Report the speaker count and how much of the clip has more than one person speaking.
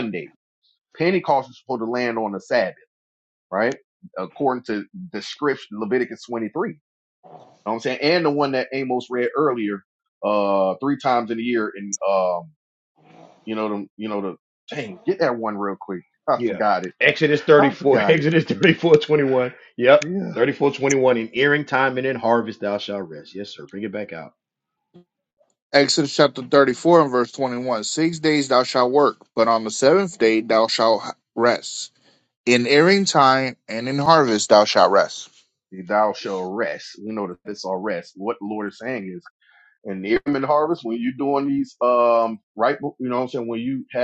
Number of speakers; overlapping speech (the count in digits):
3, about 3%